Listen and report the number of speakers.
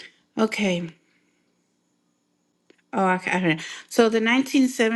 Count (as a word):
one